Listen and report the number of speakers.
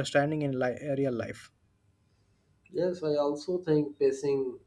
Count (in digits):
2